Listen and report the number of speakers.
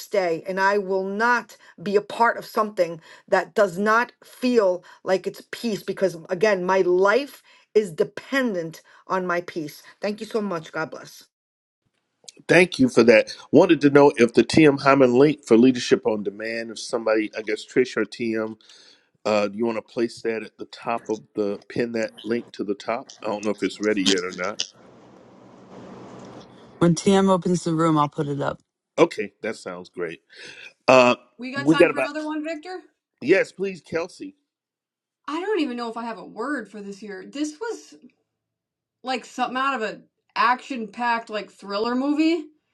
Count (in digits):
4